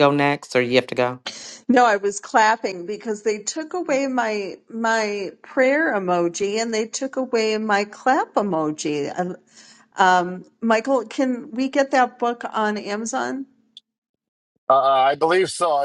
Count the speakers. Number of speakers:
three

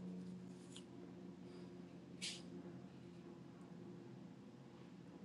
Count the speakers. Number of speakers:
zero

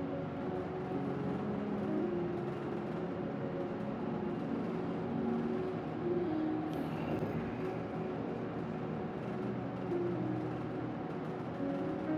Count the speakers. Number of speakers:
zero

